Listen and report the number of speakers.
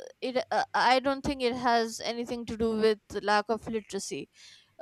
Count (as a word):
one